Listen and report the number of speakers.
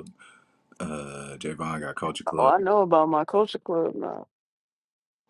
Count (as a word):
two